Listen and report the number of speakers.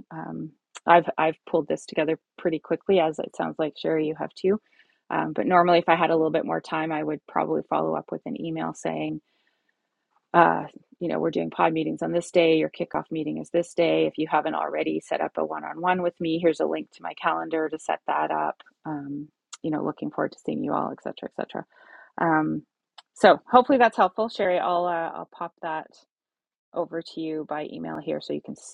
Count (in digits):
1